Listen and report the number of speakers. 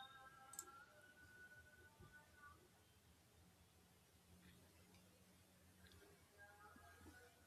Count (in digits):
0